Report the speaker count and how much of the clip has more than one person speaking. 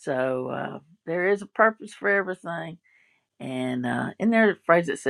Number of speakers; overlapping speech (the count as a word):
one, no overlap